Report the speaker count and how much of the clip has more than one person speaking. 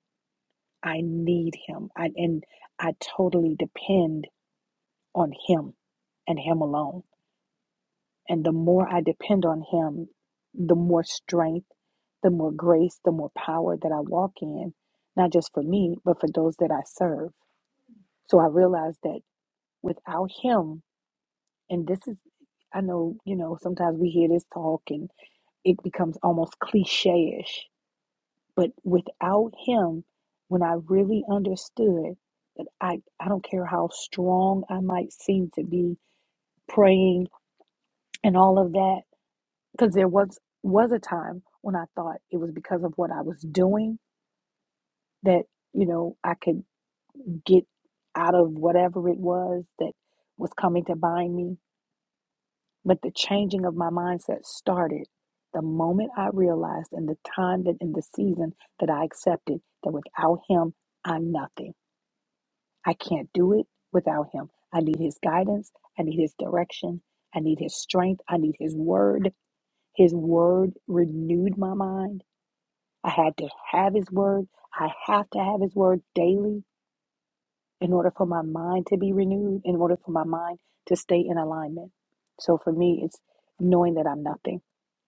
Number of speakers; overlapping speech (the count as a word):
one, no overlap